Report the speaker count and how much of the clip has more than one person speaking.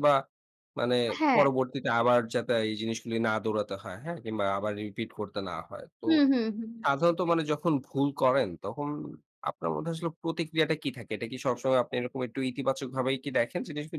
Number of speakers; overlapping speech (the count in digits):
2, about 3%